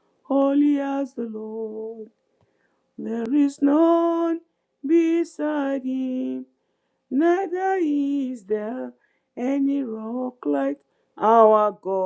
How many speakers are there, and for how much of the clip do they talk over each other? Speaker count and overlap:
1, no overlap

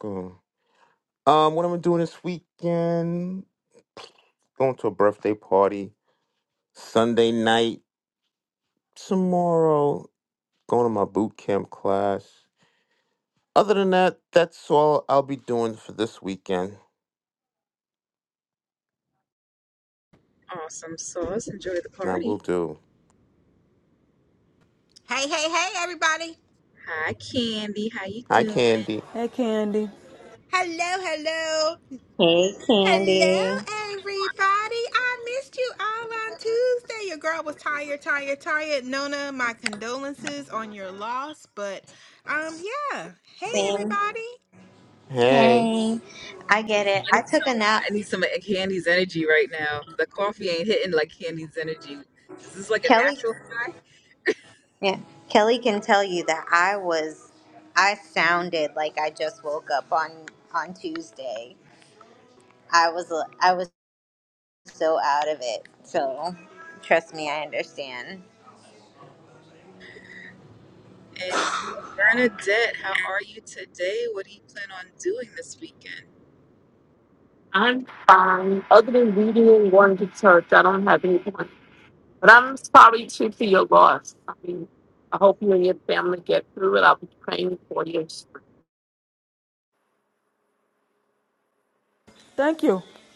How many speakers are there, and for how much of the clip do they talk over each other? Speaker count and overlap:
6, about 3%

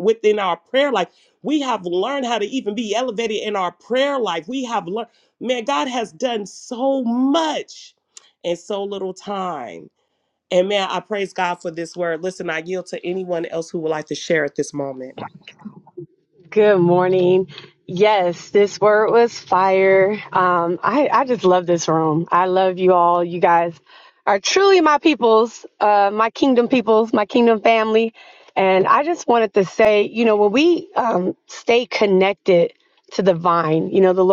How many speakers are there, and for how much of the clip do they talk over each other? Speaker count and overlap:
2, no overlap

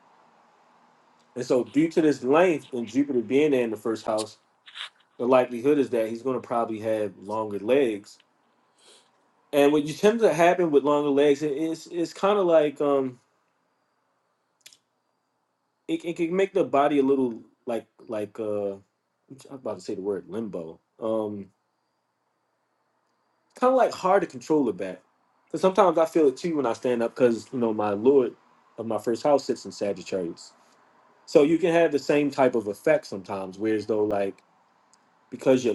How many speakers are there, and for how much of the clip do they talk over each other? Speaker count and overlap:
1, no overlap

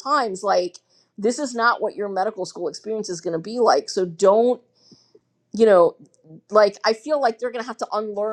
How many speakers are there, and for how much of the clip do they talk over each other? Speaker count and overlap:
1, no overlap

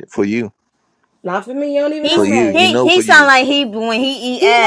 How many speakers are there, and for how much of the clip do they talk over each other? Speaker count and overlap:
3, about 32%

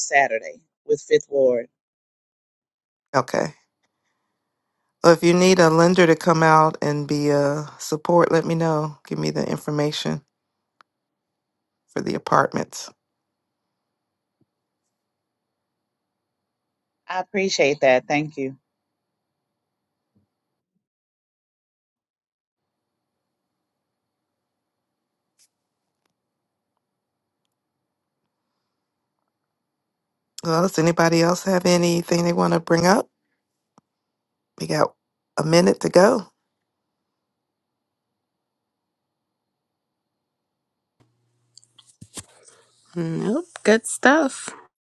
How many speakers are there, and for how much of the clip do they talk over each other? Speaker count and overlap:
3, no overlap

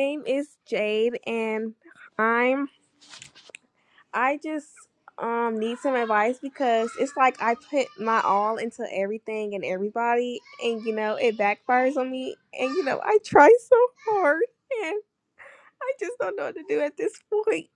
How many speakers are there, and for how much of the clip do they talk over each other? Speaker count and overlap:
1, no overlap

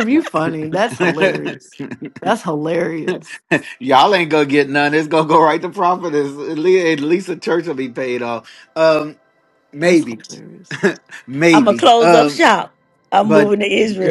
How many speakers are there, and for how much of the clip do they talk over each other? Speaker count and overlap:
3, about 11%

